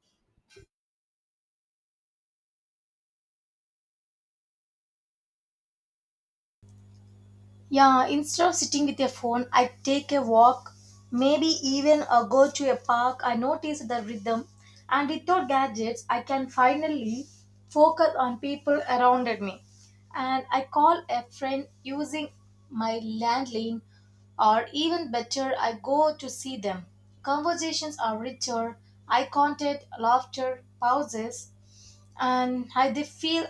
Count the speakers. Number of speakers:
1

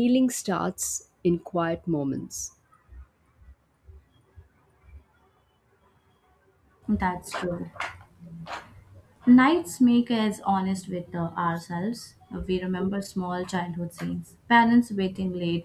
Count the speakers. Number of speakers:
2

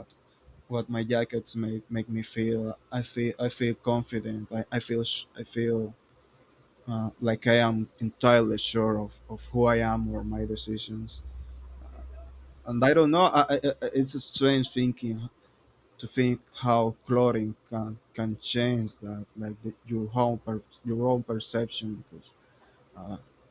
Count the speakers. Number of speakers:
1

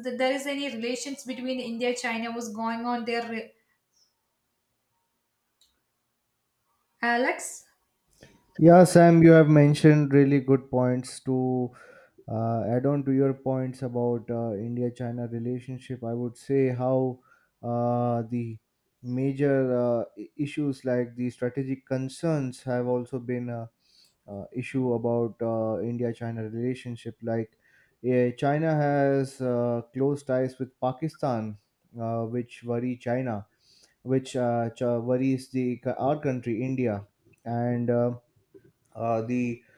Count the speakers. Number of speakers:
2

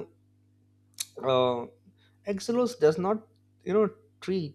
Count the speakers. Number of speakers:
1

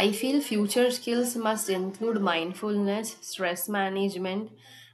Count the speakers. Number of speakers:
1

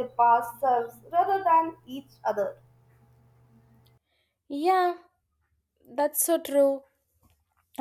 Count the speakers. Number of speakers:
2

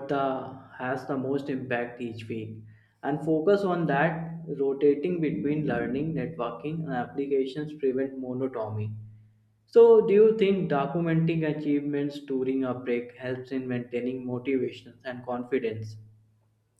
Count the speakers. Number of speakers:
1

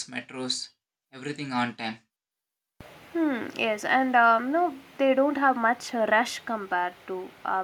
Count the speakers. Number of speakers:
2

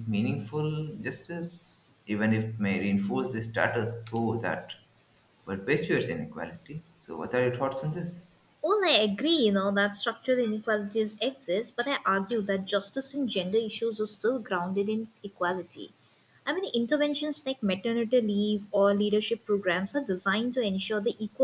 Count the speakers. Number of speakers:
2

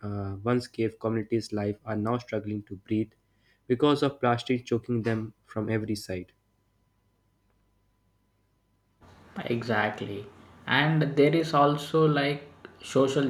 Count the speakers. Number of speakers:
2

